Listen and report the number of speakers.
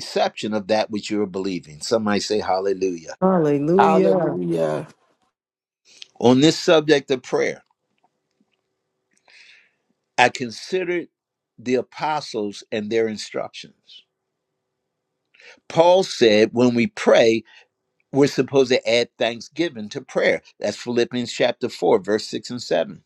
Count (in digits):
3